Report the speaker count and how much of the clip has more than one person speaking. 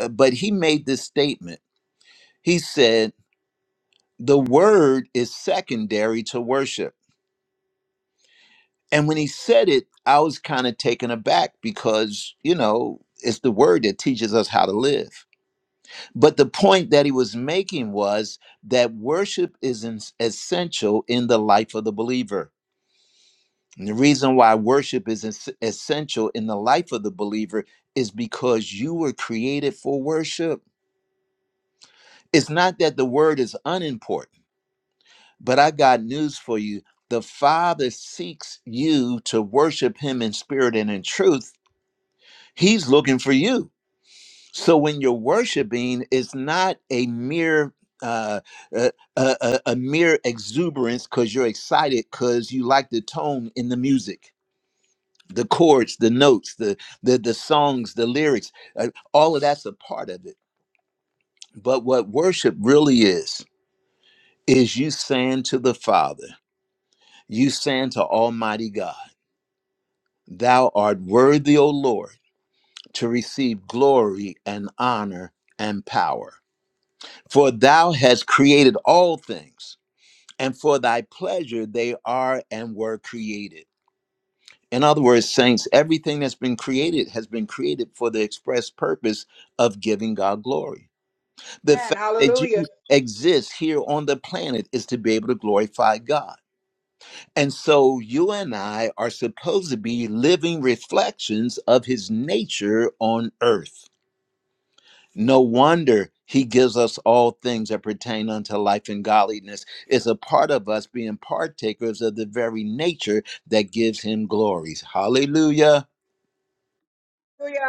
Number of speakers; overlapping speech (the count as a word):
two, about 1%